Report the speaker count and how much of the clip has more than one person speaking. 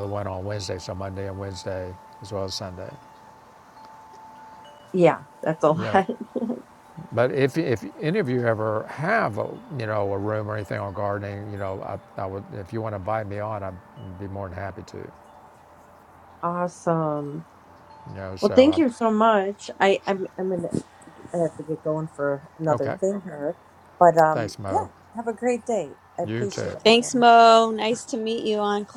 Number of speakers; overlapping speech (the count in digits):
3, about 8%